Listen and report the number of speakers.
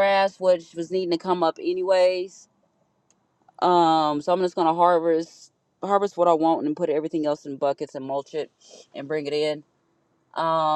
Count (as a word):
one